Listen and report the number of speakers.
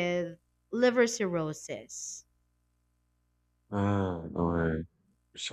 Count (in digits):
2